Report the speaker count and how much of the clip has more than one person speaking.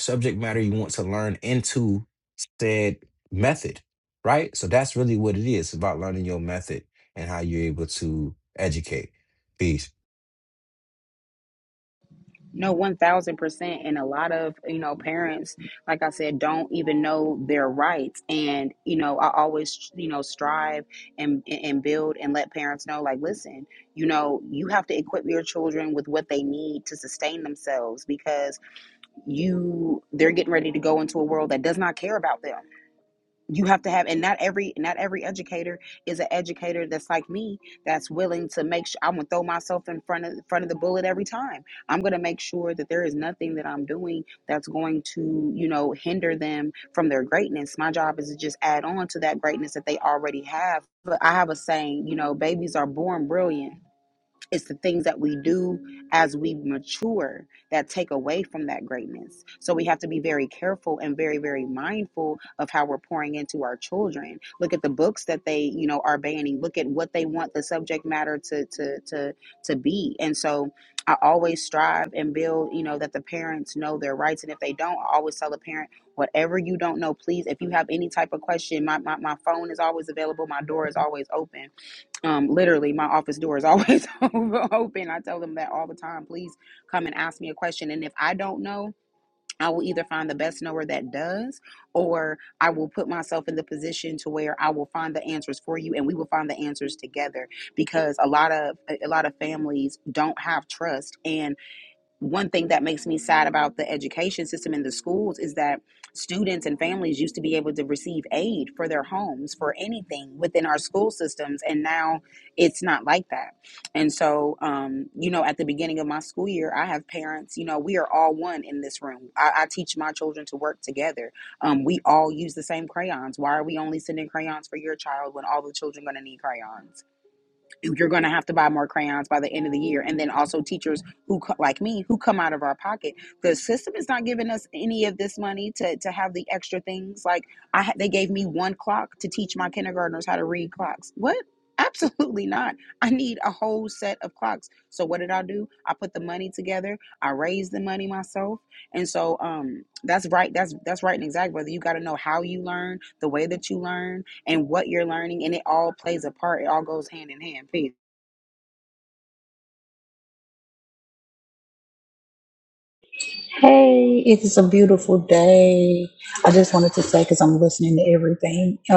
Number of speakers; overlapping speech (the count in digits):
3, no overlap